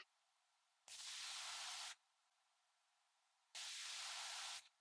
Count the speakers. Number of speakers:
0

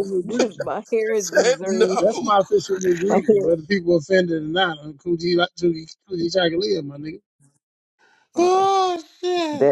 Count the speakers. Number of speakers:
3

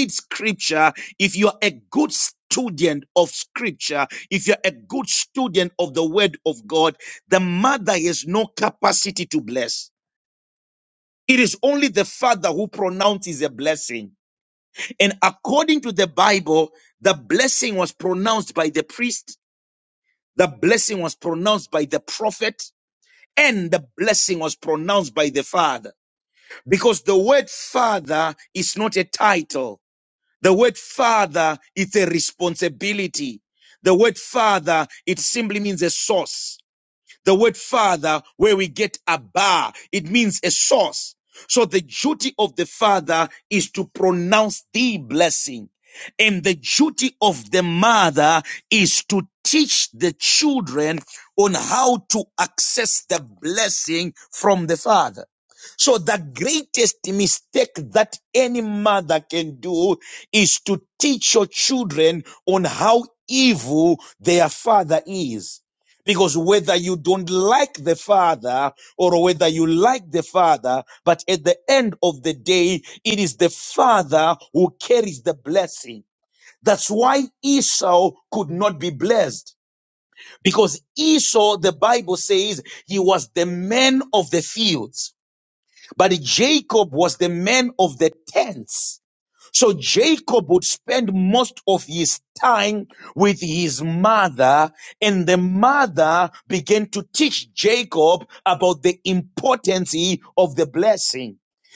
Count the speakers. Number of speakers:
1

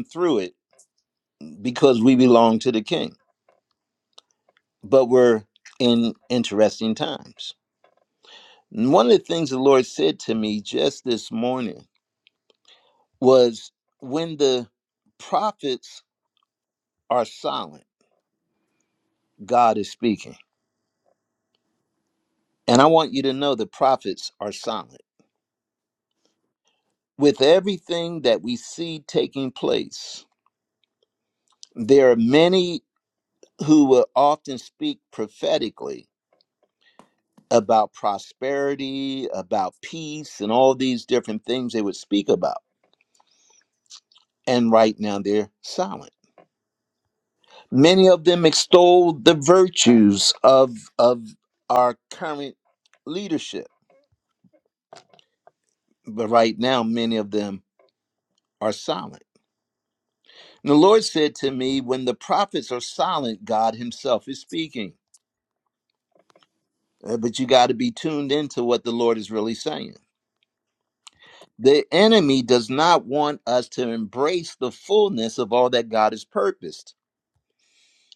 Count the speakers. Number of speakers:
1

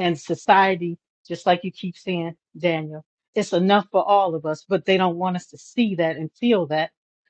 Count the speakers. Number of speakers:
1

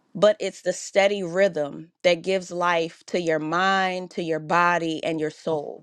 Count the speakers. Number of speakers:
1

